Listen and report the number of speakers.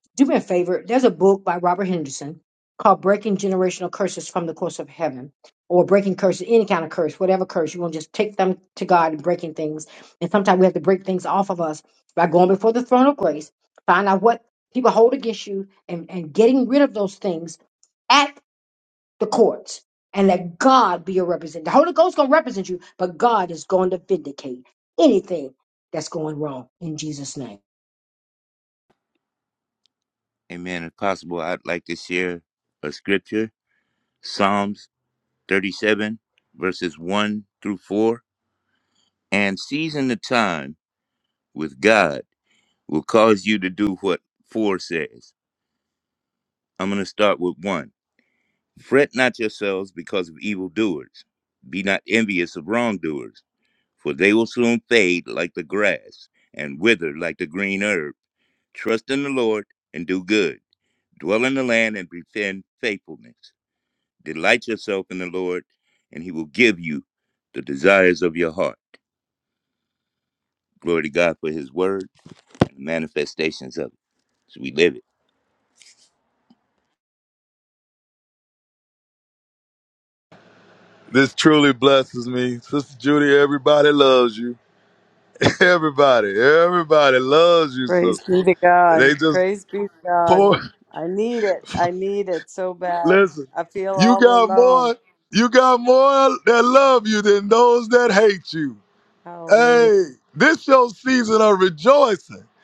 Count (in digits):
4